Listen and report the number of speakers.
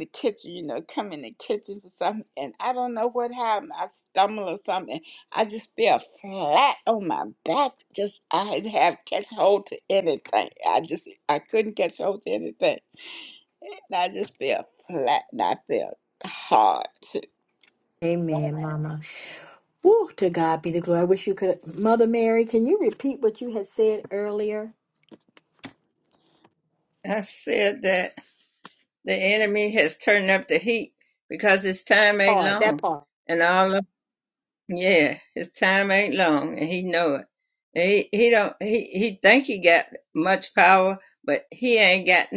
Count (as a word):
three